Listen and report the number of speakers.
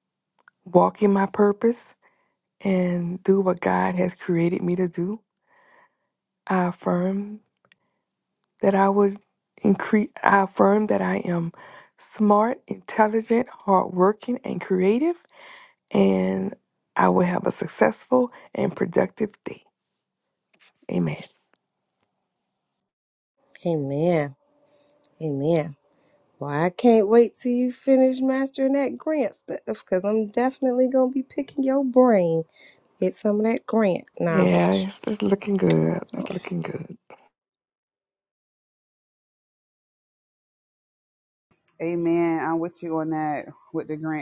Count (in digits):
3